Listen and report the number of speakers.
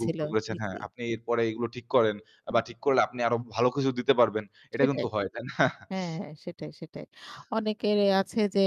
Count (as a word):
two